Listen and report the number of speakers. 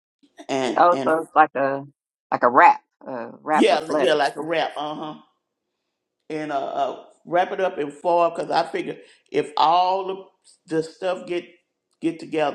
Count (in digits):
2